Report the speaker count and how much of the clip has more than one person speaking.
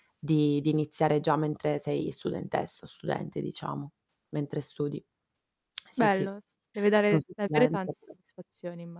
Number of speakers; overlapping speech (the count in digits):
2, about 12%